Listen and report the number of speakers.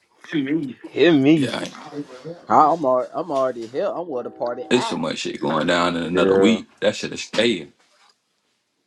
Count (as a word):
three